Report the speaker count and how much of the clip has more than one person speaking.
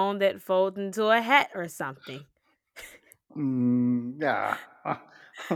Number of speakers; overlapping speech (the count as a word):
two, no overlap